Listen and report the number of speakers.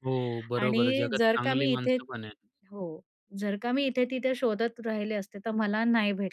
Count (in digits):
2